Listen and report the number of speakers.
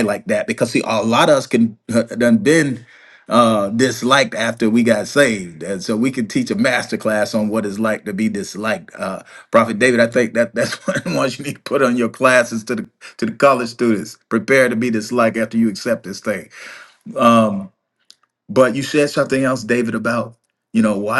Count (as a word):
one